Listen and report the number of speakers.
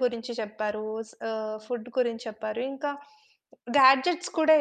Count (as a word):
one